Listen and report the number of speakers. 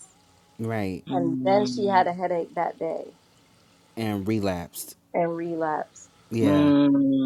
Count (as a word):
three